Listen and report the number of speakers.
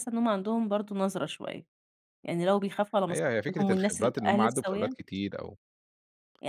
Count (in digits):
2